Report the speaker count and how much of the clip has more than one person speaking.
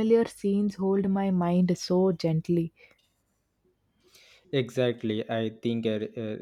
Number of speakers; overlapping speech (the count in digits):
2, no overlap